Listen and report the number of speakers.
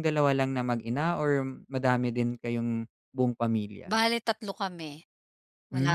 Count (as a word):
two